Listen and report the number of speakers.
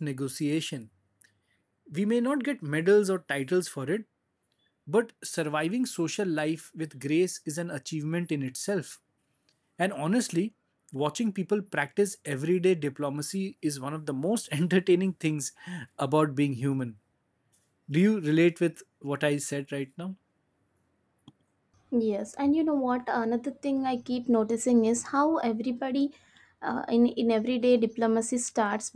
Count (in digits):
2